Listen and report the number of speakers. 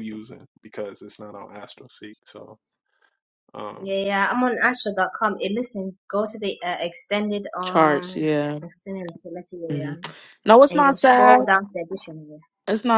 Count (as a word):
three